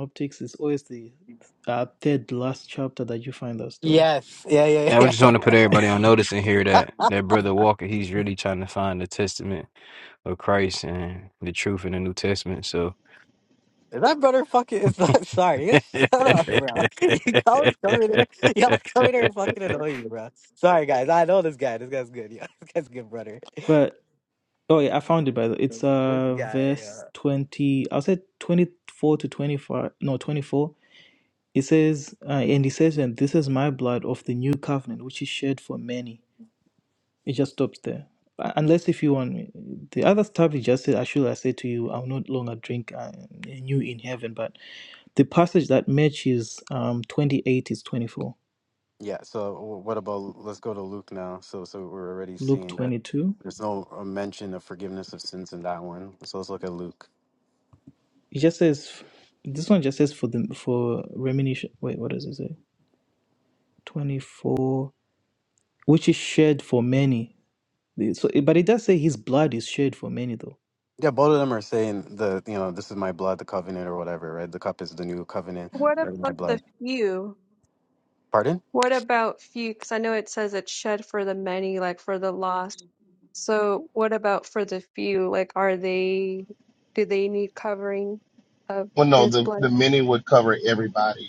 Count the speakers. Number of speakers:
five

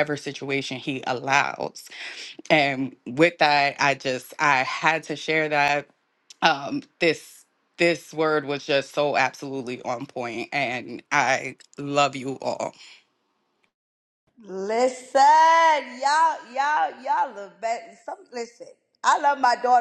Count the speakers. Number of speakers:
two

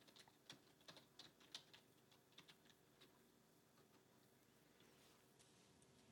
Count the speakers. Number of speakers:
zero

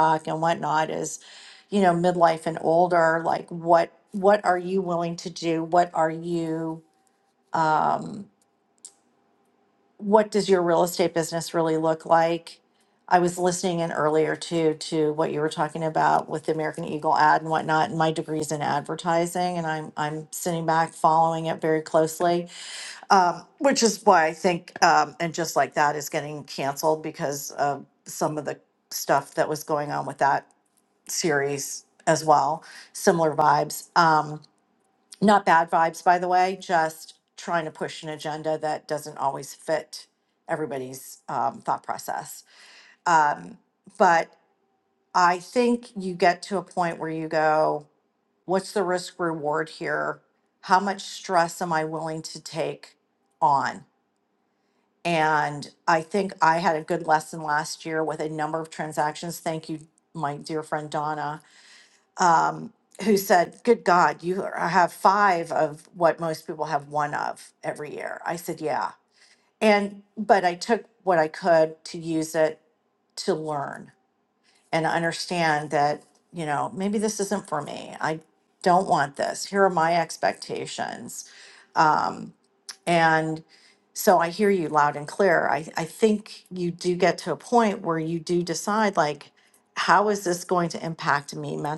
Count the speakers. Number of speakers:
one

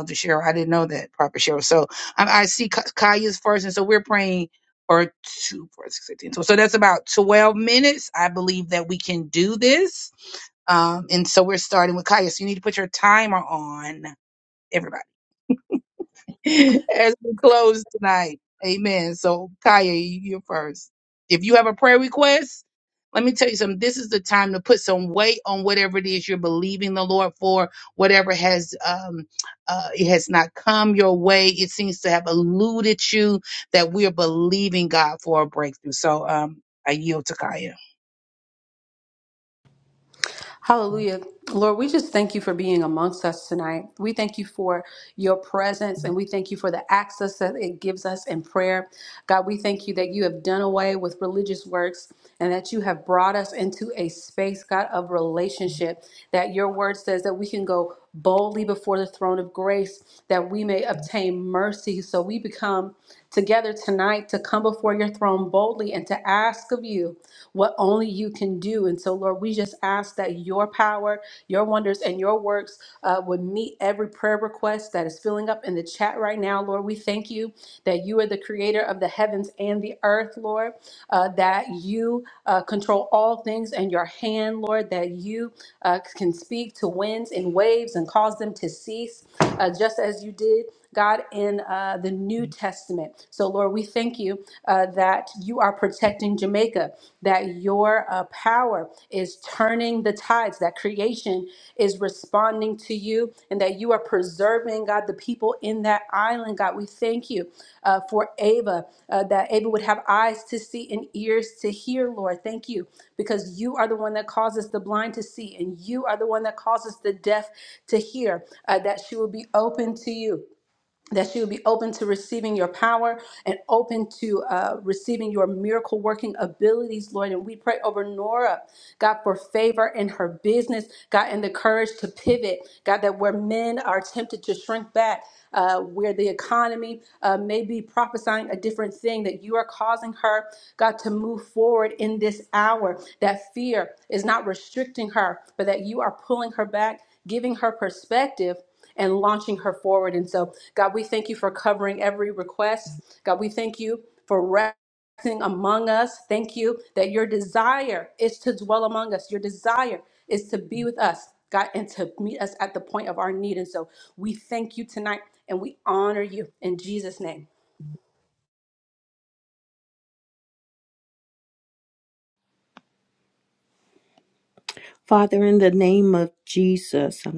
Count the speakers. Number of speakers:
three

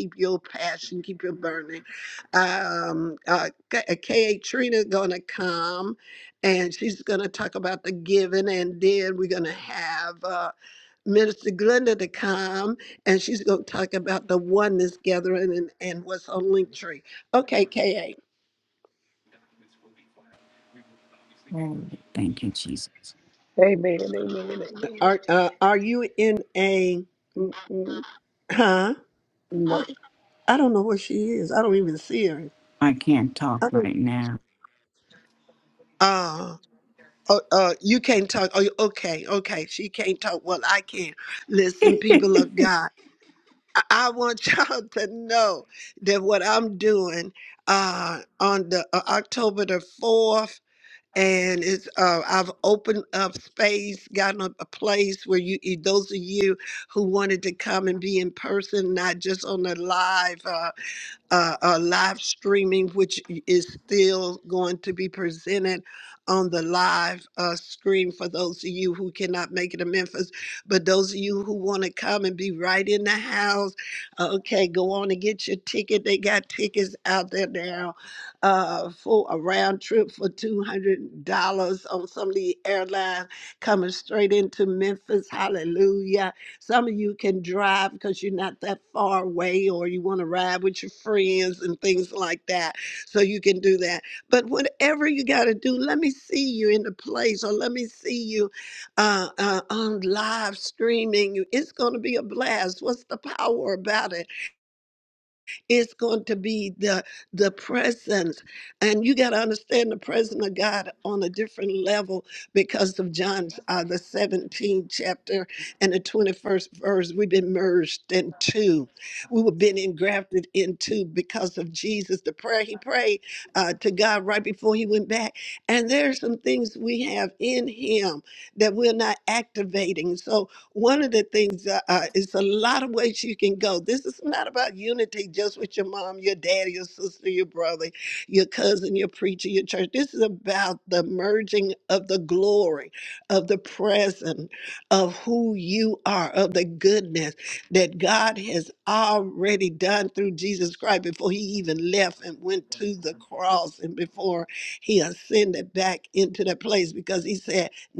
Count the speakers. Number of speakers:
three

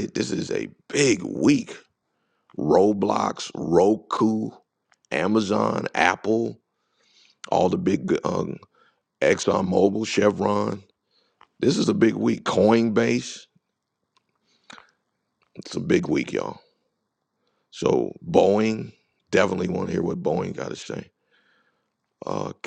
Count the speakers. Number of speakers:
one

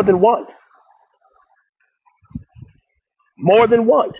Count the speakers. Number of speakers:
one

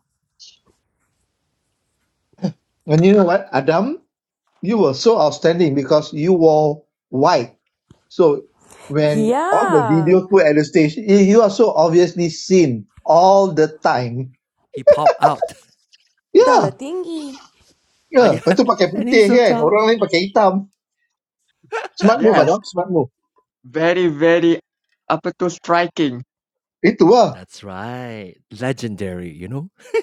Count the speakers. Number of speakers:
four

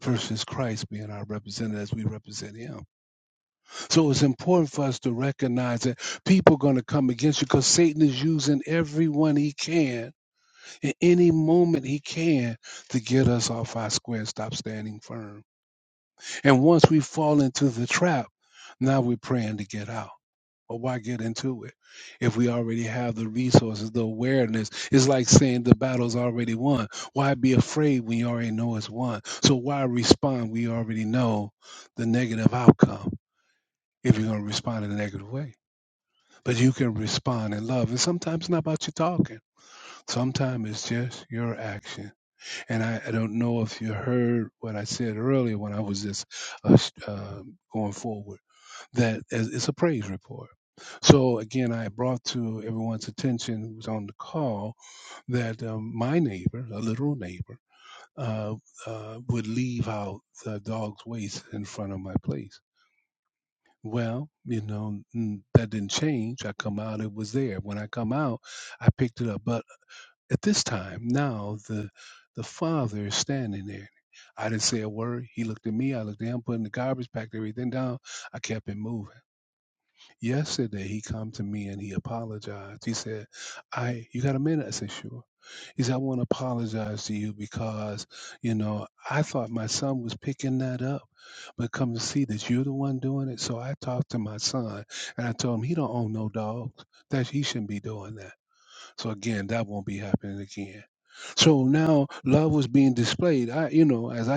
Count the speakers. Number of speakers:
one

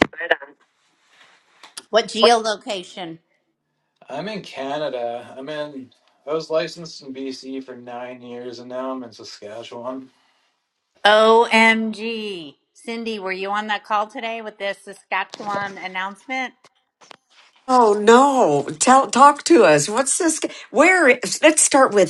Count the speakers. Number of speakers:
three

